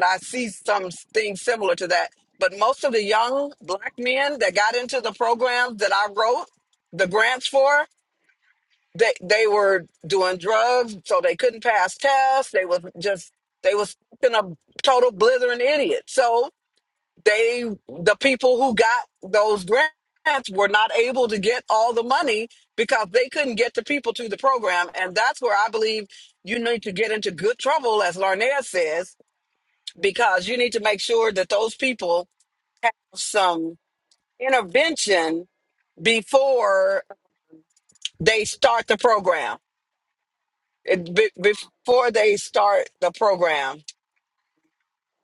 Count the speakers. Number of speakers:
1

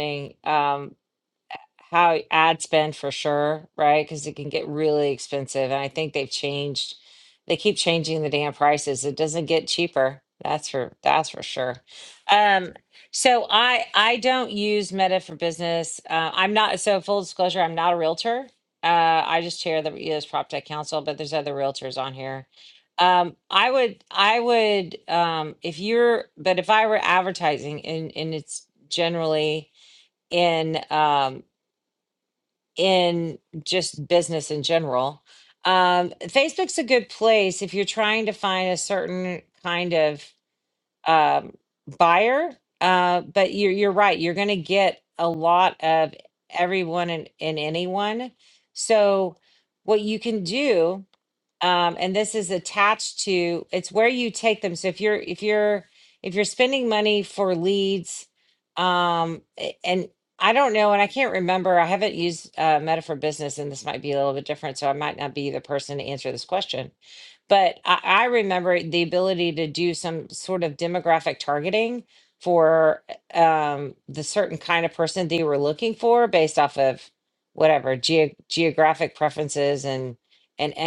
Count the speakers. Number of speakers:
1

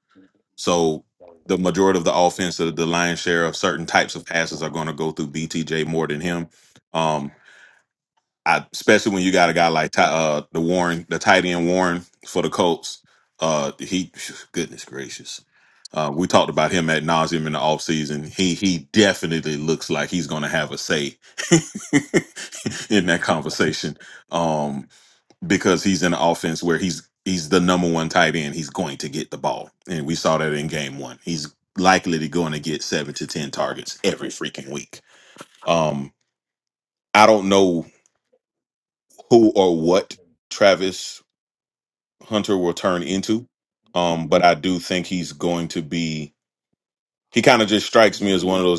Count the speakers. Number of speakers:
1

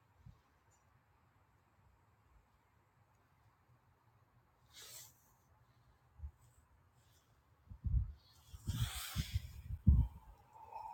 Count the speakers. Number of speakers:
0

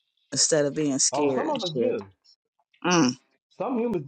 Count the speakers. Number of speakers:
2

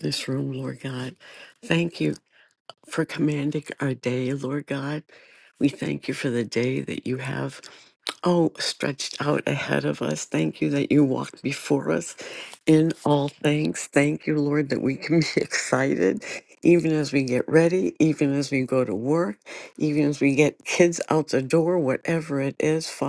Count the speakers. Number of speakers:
1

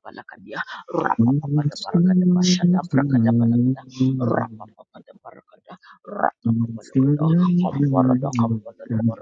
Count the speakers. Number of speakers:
2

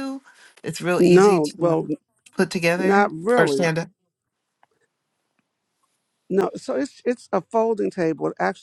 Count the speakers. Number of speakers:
2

